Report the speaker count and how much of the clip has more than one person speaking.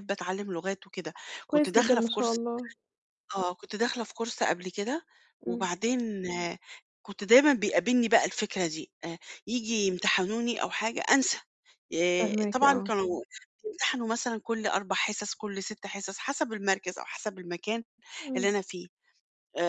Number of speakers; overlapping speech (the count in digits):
2, about 9%